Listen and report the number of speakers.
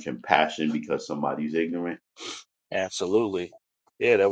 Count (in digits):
2